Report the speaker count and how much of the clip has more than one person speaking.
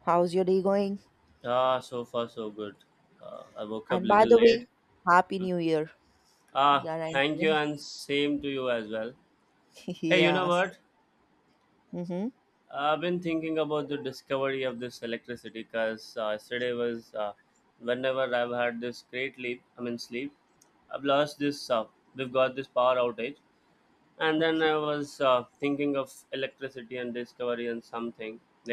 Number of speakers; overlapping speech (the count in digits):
2, about 8%